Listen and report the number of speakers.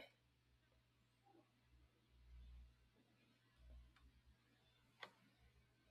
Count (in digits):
0